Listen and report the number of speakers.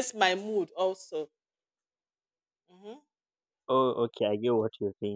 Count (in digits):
2